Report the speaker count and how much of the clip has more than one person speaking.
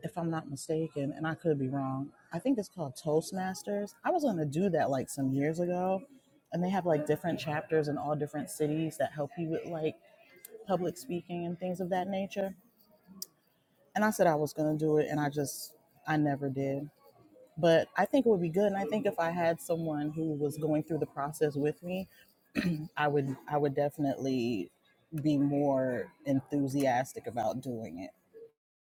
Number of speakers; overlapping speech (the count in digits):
1, no overlap